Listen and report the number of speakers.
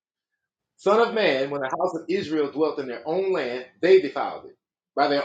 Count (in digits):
1